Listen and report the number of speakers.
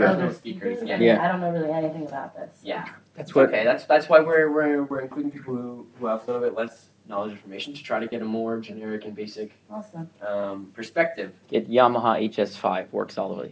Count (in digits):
3